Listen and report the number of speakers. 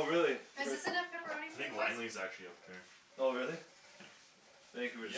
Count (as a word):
three